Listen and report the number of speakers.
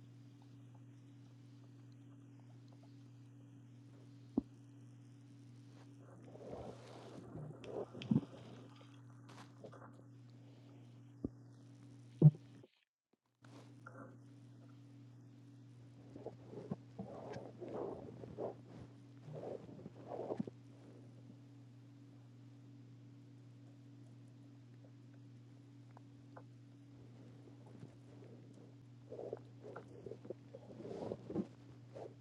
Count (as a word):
zero